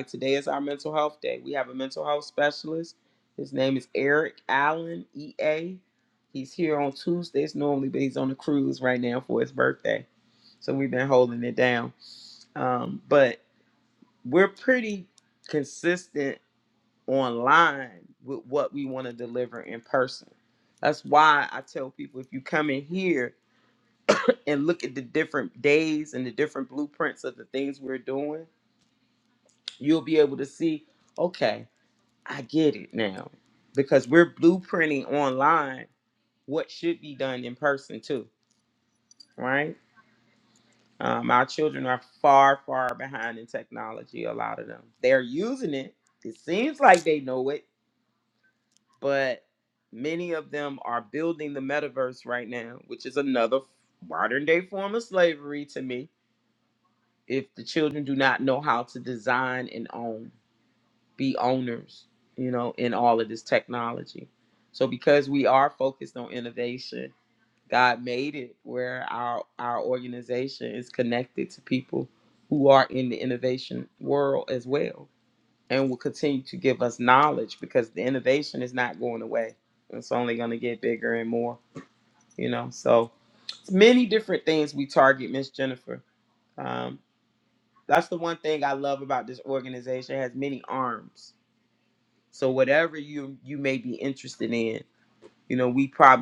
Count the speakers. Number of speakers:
1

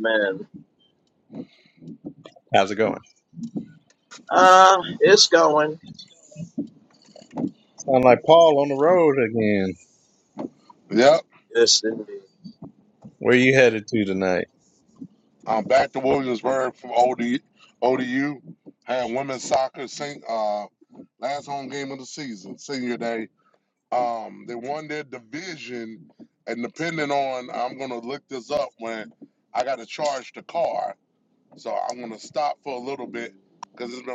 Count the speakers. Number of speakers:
3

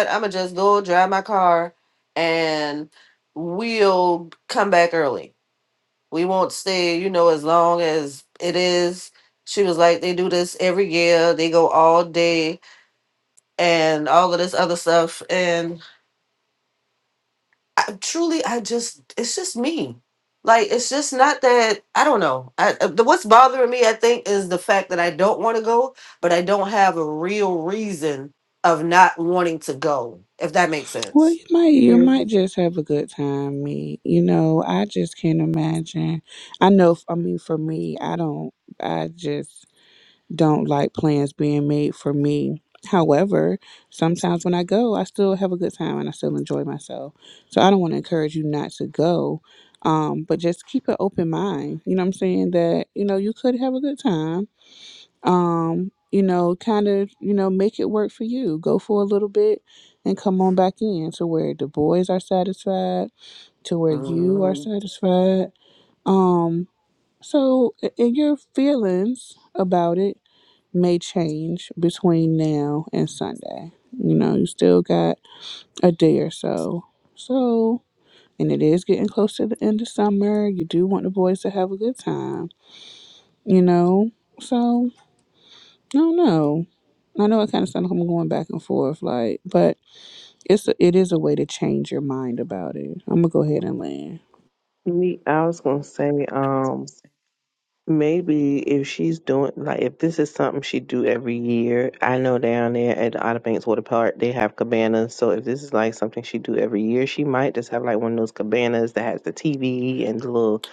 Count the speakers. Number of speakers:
3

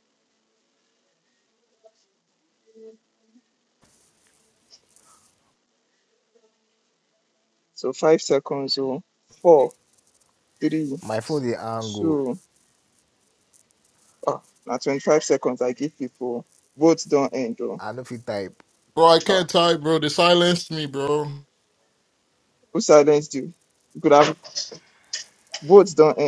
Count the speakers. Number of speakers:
3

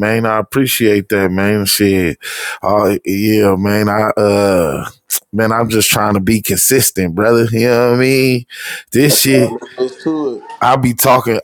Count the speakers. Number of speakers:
2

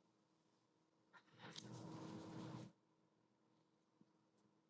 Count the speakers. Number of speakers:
0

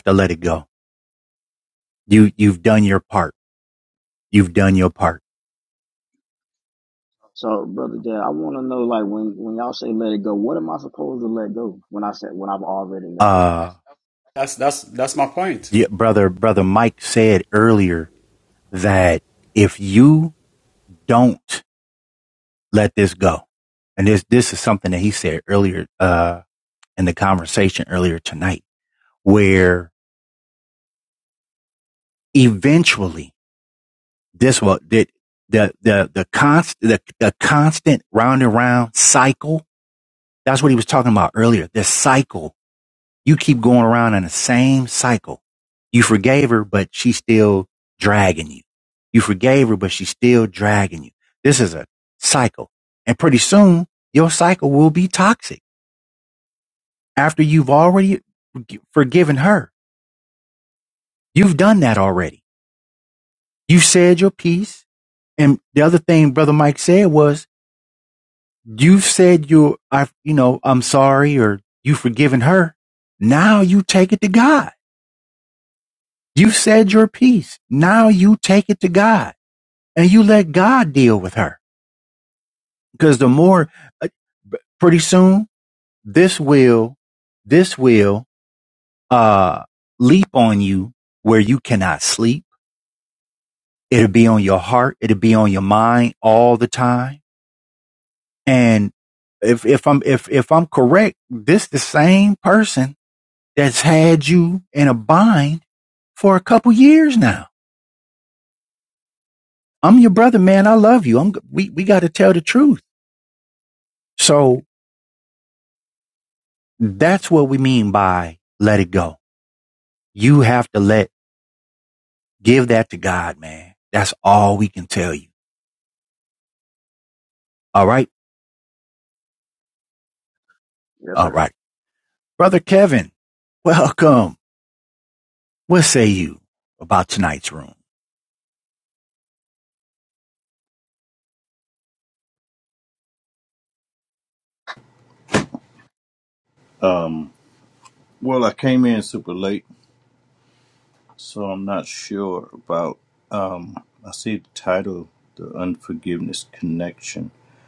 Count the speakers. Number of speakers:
4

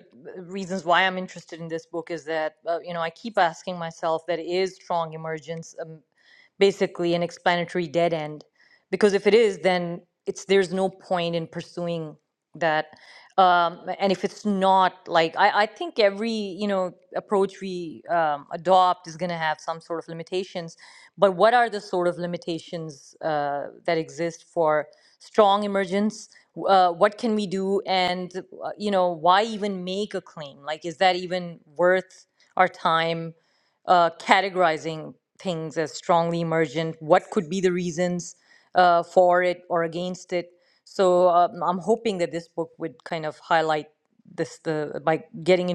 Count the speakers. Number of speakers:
1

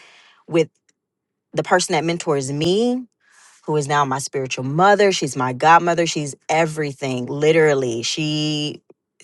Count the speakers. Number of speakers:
1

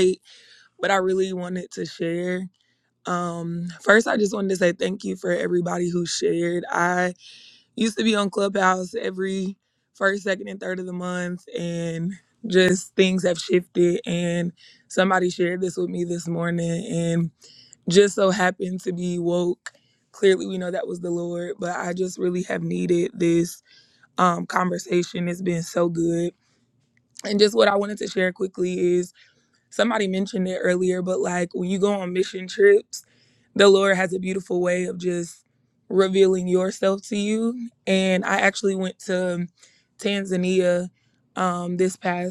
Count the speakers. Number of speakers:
1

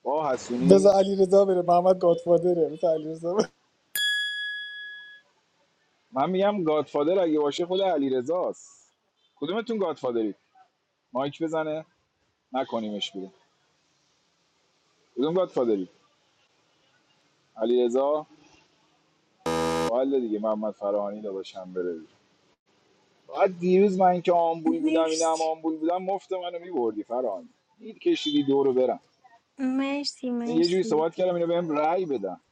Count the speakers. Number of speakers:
3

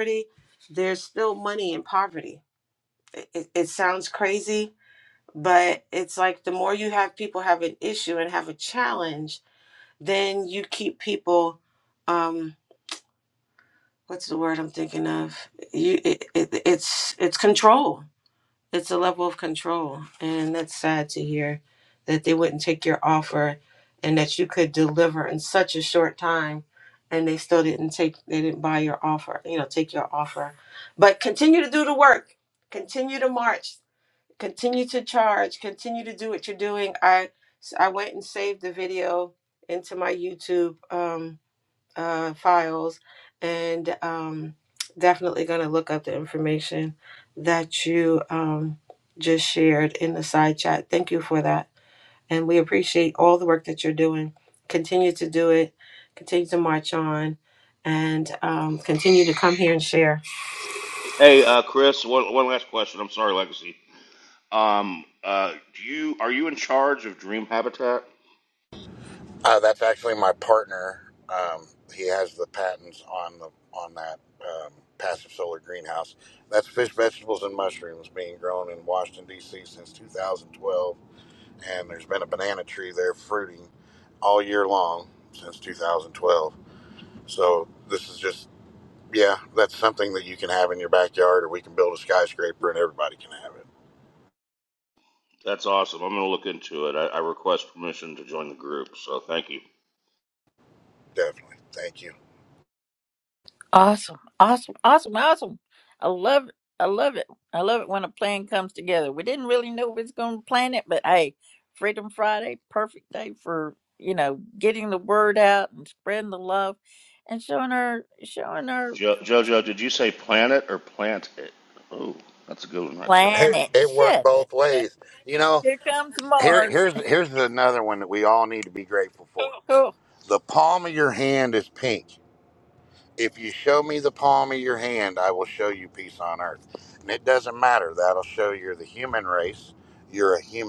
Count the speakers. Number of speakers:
4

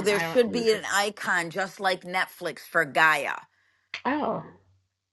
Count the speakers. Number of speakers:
2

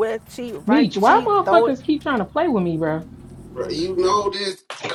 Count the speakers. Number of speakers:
3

